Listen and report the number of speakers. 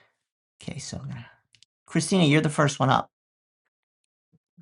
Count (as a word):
one